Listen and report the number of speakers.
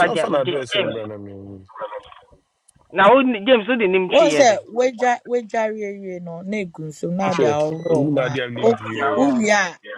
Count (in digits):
3